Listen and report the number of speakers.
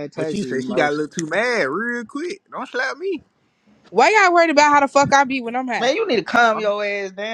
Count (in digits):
3